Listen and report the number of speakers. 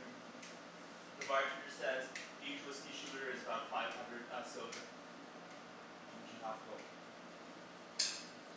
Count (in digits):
1